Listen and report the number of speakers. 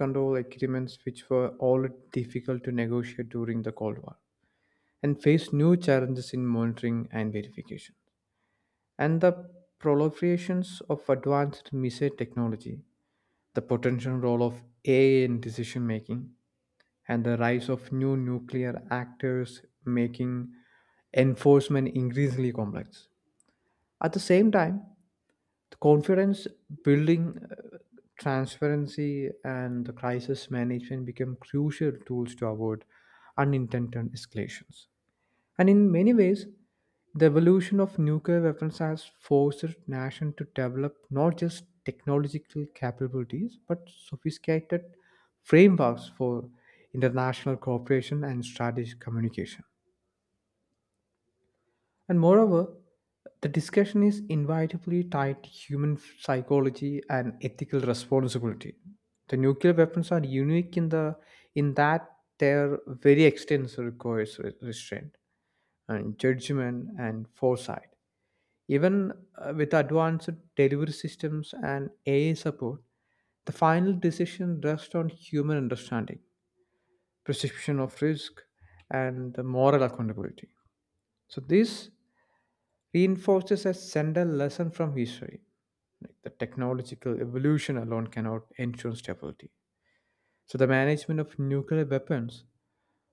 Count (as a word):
one